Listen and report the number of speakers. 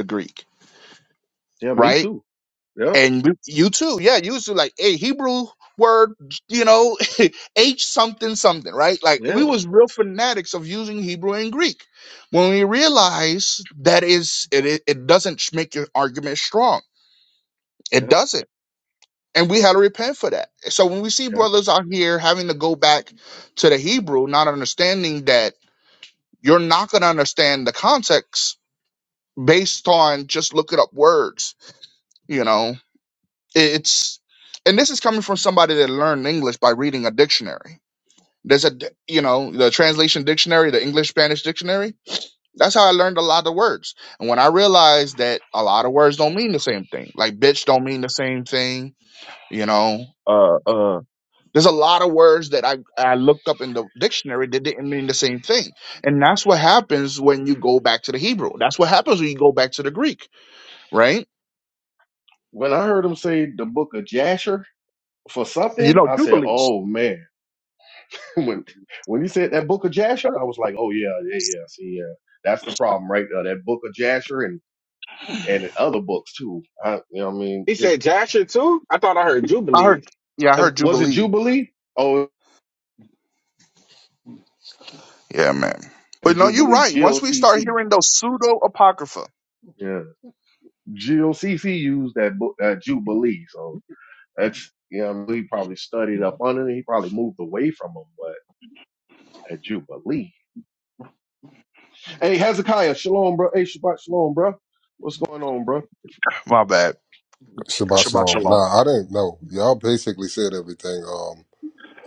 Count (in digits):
4